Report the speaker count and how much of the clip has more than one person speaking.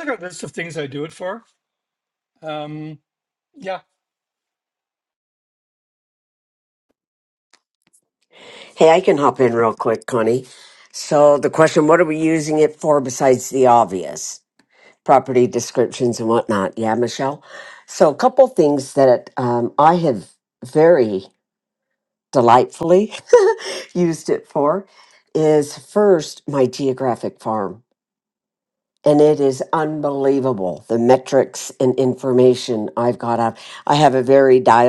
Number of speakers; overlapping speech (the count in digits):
2, no overlap